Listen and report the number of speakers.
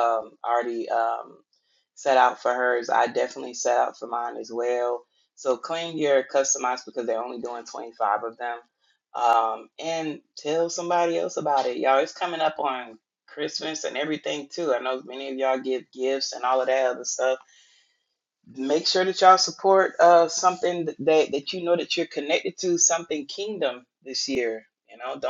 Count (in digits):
1